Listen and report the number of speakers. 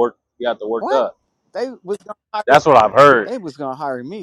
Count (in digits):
2